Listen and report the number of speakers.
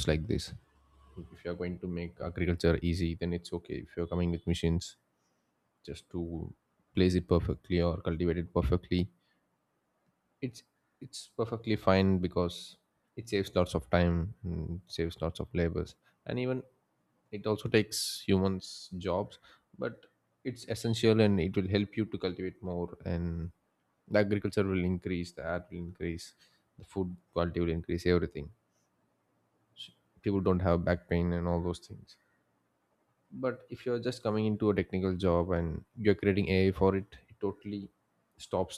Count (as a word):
one